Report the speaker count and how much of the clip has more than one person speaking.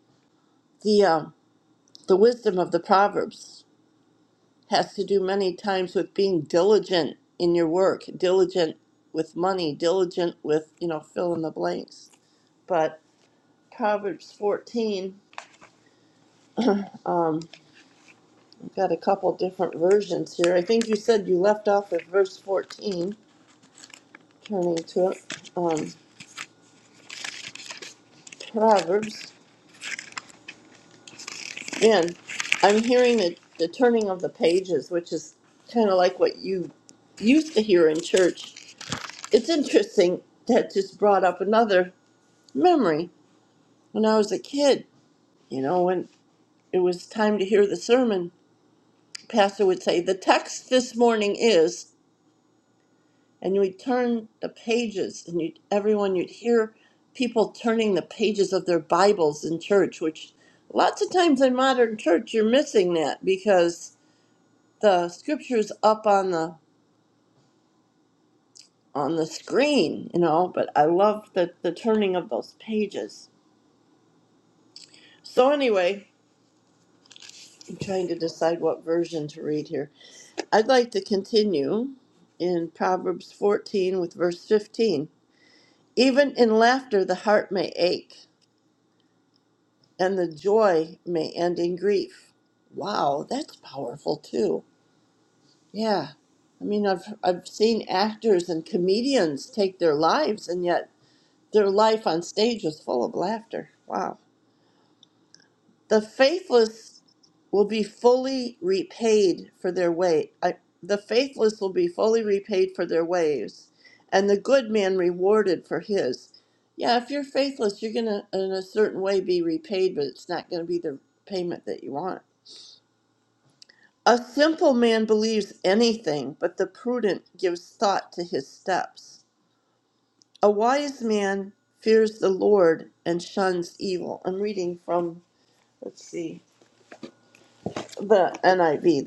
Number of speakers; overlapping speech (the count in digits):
1, no overlap